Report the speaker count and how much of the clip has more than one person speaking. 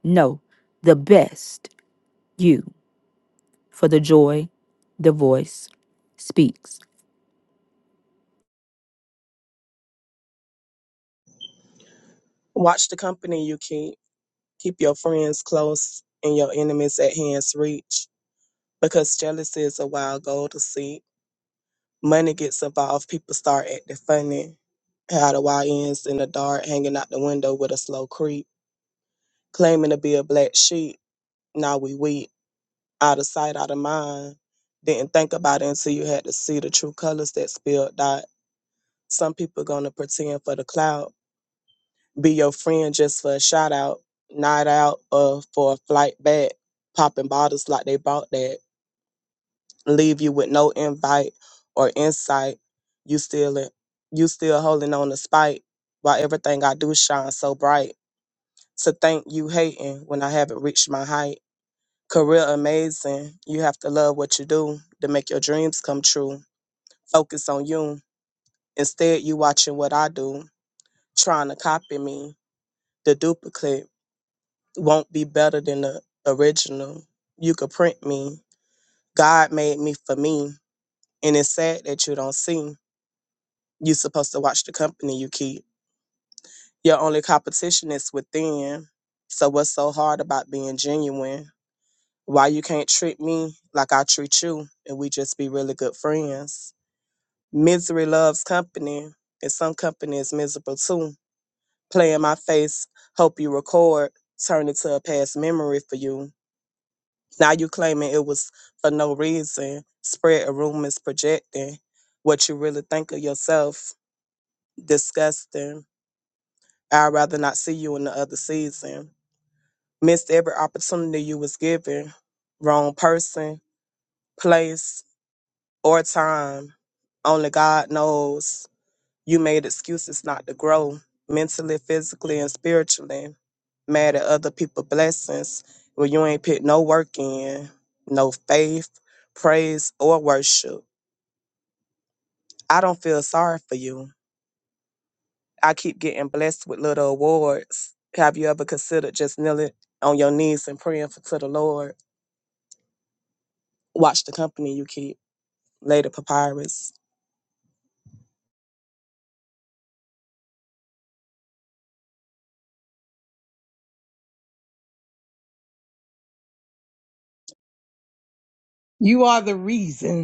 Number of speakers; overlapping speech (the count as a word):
three, no overlap